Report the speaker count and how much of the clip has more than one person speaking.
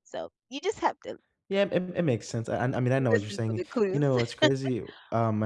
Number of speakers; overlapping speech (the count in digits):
2, about 18%